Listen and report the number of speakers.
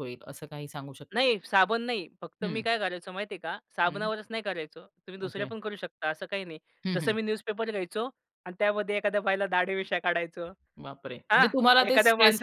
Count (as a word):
two